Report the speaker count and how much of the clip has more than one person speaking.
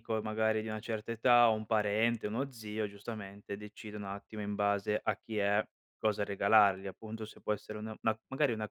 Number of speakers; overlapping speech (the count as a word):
one, no overlap